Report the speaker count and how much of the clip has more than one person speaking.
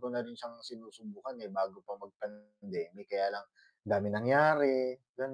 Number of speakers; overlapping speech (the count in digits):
1, no overlap